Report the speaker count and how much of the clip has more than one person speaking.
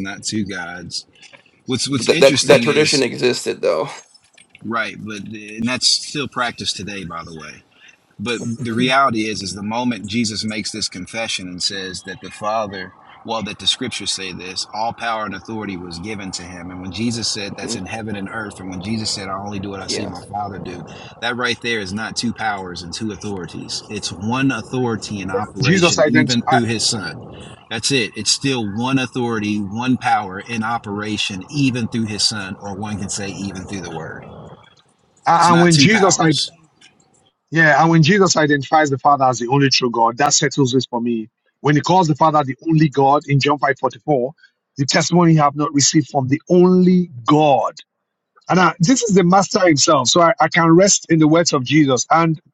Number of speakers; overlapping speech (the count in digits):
3, about 6%